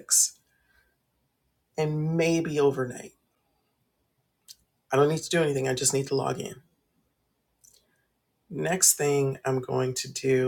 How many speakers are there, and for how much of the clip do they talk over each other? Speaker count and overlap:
1, no overlap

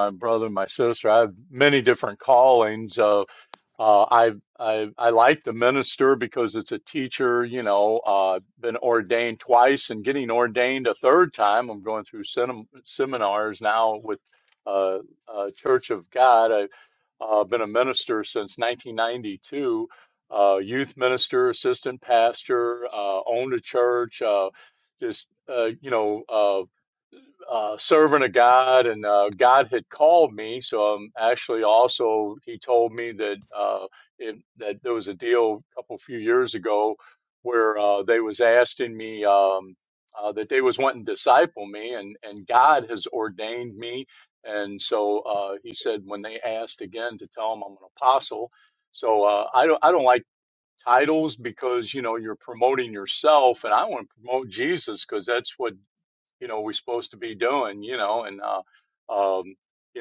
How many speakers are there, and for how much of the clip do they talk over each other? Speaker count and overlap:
1, no overlap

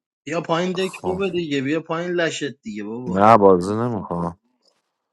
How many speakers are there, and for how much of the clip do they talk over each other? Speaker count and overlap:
2, about 12%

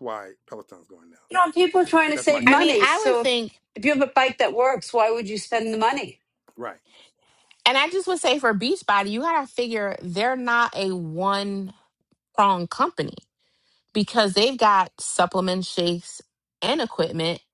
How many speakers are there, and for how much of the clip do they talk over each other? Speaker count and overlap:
3, about 6%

